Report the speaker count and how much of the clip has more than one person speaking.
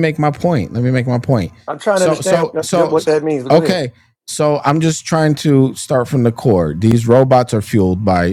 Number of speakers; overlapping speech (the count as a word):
two, about 16%